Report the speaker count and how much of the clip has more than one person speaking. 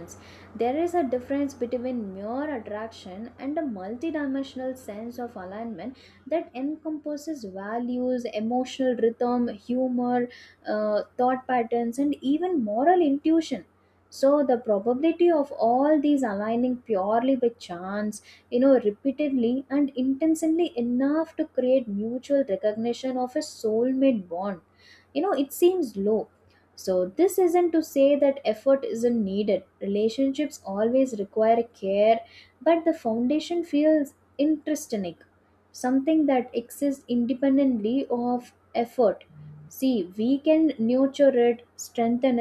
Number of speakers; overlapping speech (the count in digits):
1, no overlap